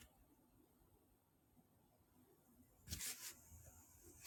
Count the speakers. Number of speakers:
zero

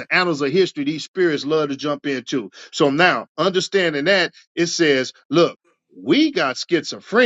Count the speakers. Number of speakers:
one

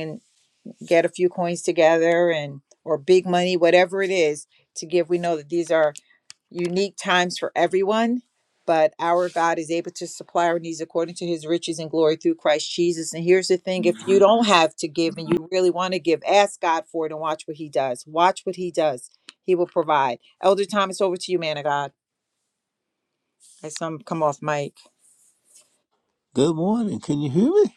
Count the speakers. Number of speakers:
two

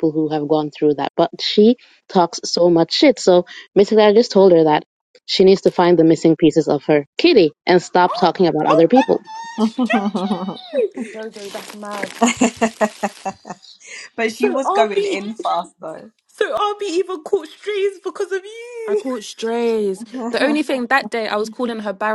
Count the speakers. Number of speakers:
four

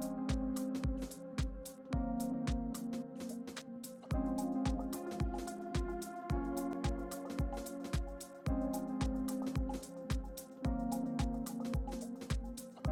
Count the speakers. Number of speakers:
zero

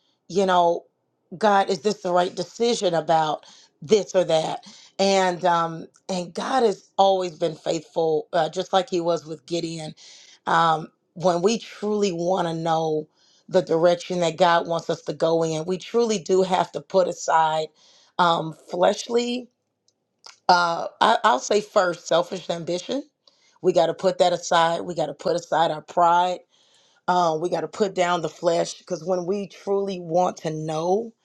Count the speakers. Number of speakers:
one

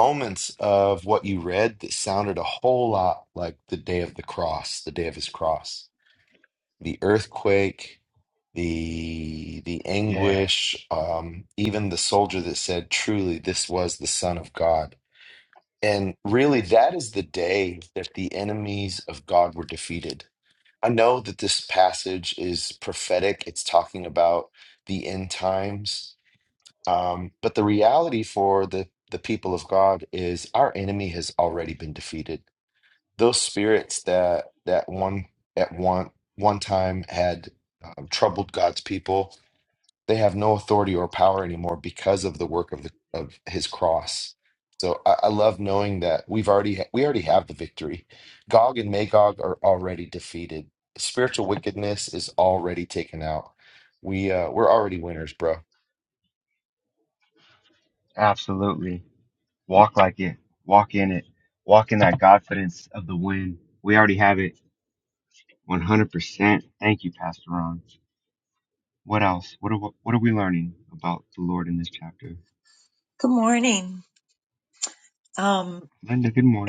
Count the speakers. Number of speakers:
three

